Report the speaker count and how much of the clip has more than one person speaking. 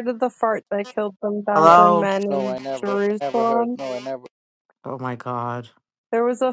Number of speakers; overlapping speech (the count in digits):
3, about 31%